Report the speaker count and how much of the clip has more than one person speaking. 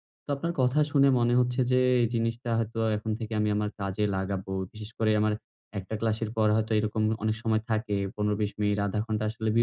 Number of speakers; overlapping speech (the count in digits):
1, no overlap